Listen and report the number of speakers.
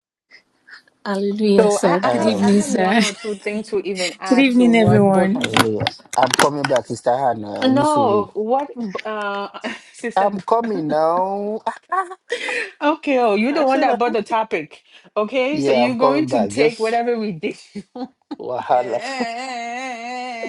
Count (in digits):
4